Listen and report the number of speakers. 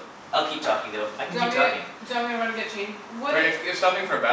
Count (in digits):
3